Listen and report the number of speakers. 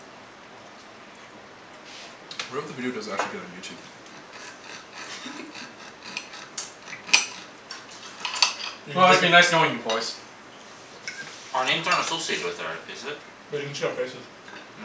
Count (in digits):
4